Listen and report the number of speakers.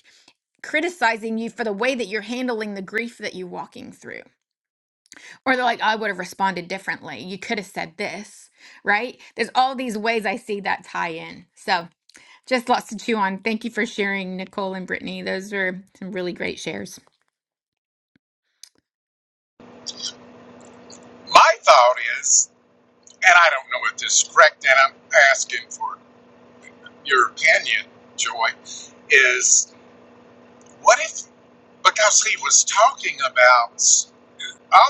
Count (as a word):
two